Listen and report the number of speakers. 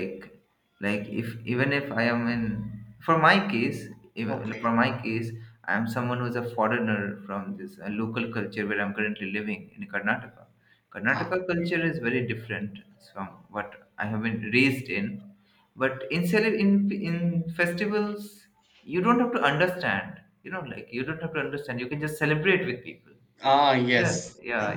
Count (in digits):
2